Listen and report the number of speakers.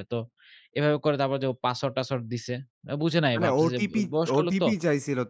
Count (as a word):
two